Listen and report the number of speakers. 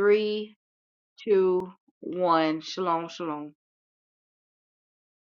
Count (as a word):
one